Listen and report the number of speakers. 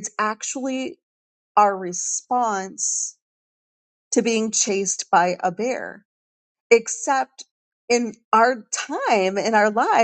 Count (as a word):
one